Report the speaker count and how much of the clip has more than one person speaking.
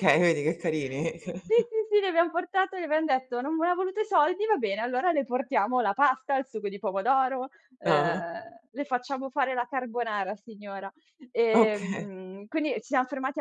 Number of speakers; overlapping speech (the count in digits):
2, about 5%